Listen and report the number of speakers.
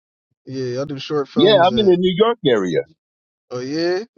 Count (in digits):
2